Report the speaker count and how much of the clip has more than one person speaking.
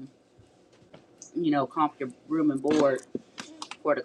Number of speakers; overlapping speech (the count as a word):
one, no overlap